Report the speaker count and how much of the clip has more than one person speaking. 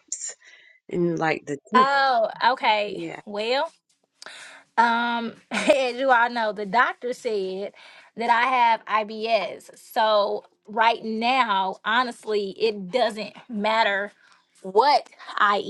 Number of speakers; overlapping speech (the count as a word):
two, about 3%